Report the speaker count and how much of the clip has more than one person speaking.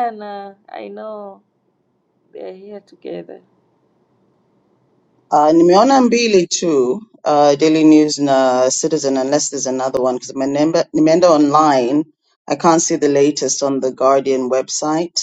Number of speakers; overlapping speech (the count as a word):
two, no overlap